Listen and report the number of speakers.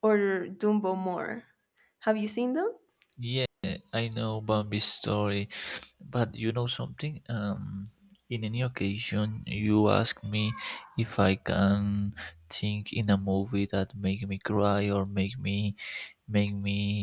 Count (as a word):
two